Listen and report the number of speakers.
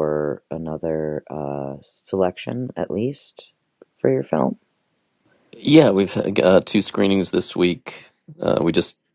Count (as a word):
two